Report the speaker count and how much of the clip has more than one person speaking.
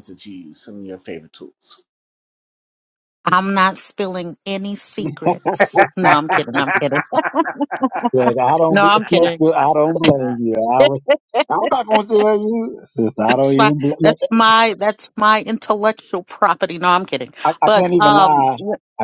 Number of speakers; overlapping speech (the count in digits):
3, about 12%